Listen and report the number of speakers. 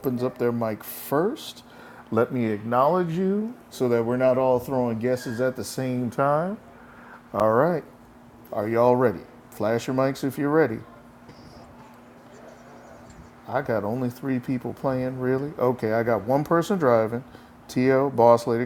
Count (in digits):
1